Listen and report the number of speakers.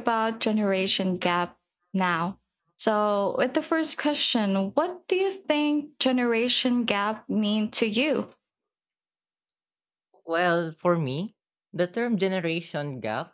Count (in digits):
2